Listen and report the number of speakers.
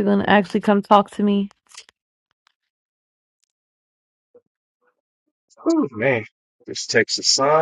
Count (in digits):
2